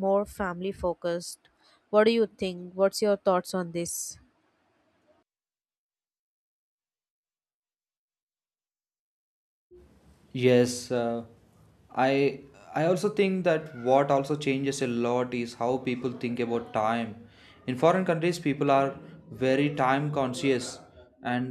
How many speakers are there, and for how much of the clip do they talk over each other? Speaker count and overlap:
2, no overlap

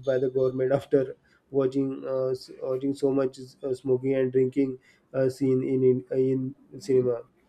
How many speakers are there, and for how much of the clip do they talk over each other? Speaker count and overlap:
1, no overlap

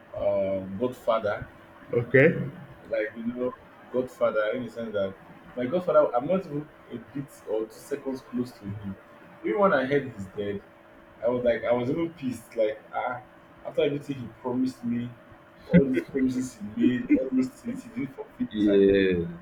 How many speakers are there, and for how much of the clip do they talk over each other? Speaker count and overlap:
2, about 3%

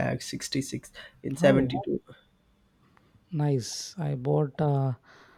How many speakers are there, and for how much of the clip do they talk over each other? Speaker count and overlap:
2, about 8%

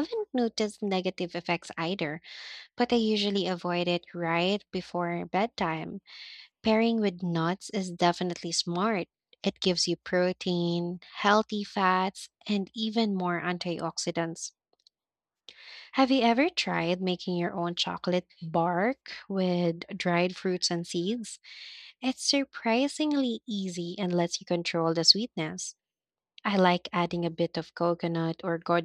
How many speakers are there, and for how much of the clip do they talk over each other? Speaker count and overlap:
1, no overlap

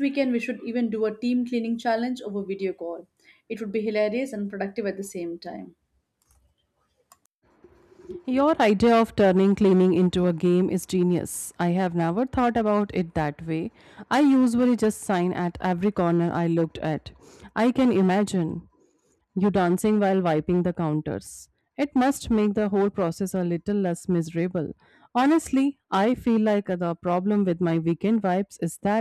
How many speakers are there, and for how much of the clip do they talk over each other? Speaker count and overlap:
2, no overlap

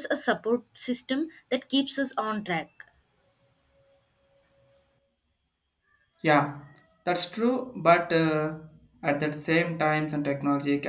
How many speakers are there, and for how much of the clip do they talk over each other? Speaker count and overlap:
2, no overlap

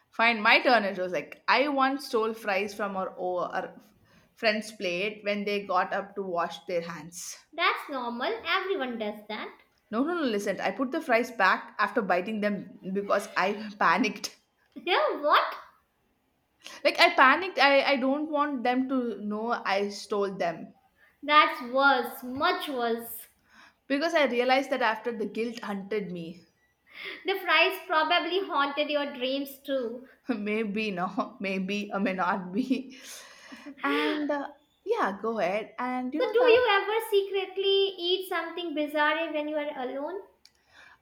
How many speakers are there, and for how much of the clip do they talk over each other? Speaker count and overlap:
2, about 1%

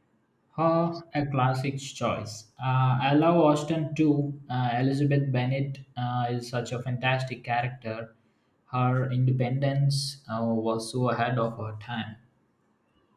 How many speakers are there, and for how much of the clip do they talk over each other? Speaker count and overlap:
1, no overlap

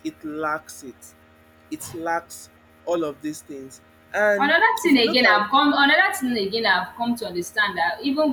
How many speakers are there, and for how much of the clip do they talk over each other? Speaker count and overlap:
2, about 9%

